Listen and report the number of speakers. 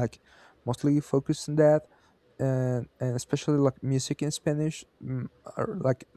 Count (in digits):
1